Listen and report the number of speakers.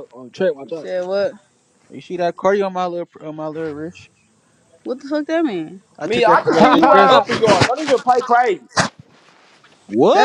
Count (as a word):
four